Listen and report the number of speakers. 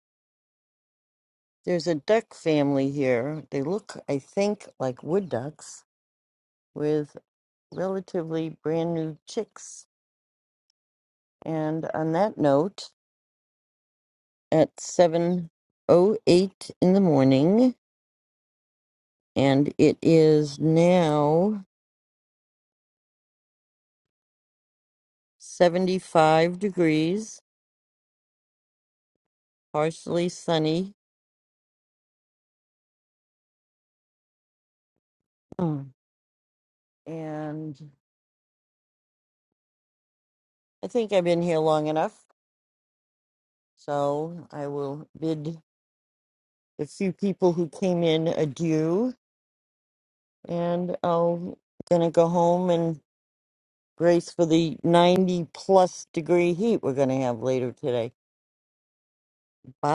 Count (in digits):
1